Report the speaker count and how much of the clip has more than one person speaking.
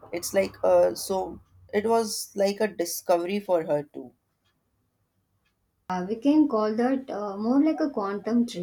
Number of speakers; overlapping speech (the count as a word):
two, no overlap